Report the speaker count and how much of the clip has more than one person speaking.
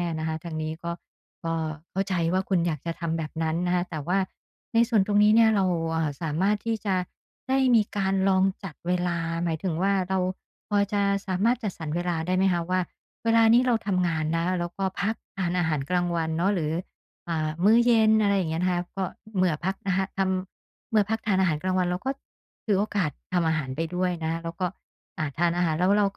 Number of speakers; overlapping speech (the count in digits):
1, no overlap